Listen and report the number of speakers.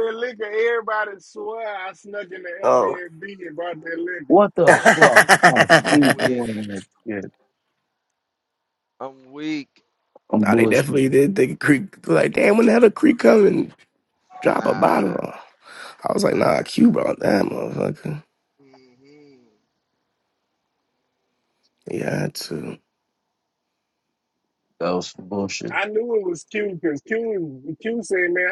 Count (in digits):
4